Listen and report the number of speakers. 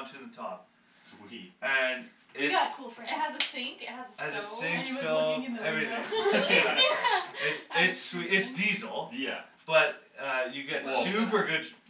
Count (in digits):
4